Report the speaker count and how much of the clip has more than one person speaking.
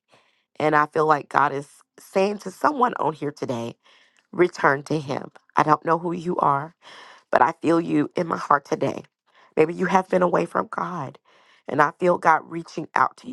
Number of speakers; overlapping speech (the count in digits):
1, no overlap